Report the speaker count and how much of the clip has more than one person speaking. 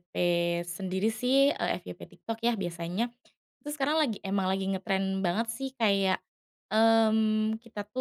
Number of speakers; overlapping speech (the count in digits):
1, no overlap